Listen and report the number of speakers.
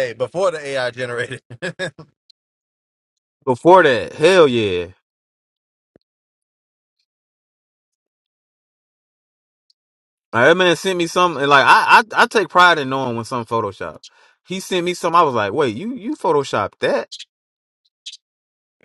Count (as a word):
two